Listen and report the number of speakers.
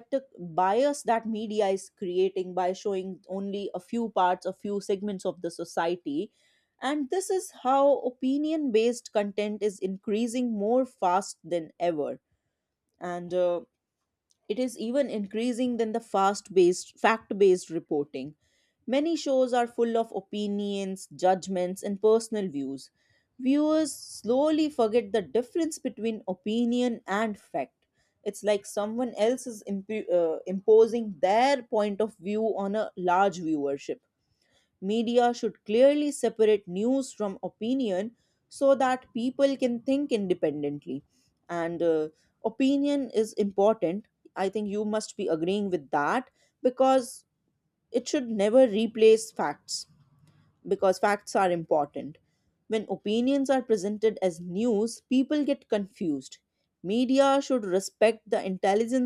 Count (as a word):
one